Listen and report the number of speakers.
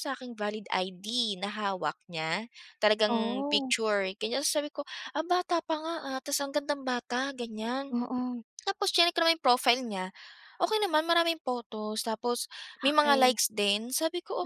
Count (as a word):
two